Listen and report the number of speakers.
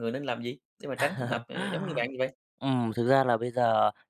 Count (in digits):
2